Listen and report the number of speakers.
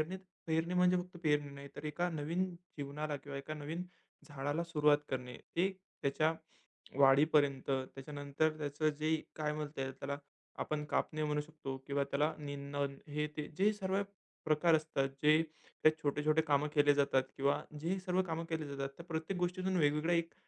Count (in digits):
1